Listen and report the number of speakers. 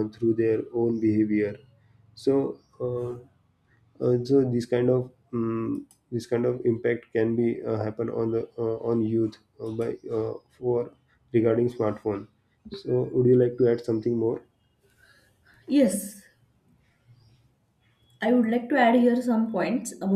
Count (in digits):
2